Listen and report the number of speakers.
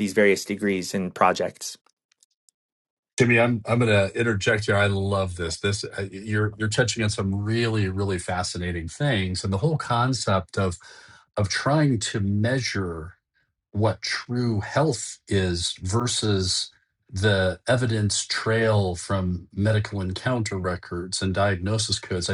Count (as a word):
two